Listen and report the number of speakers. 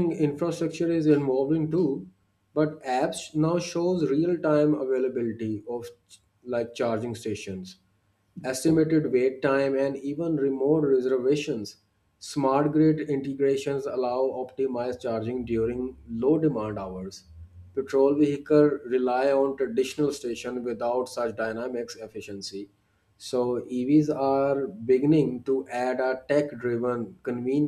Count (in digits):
1